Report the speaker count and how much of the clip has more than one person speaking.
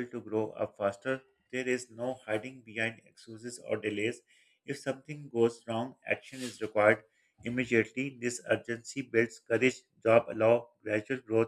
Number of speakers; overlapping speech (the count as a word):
one, no overlap